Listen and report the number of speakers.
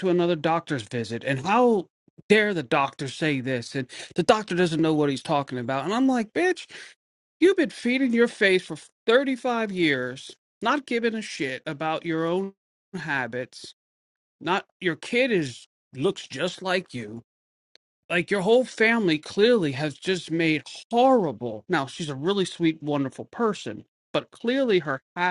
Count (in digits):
1